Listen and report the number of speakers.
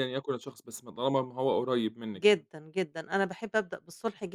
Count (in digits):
2